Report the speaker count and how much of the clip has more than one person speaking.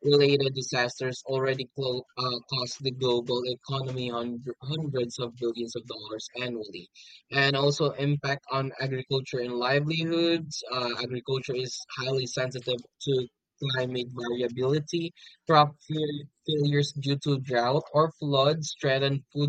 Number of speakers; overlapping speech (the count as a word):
one, no overlap